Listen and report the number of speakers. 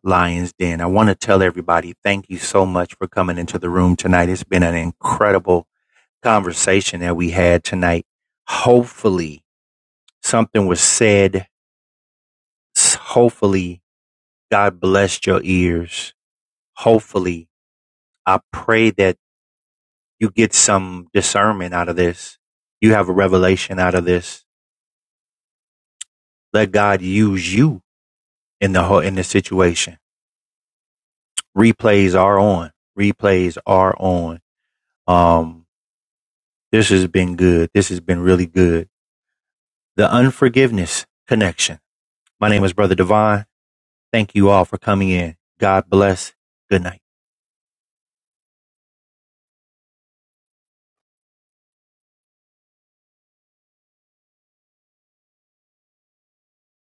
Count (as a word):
one